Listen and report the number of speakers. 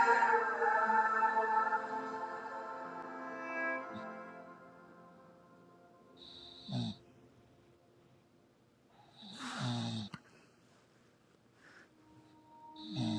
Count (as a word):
zero